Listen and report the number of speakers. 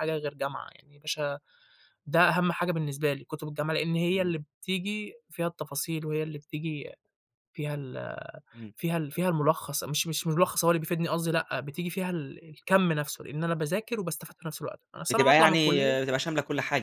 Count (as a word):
two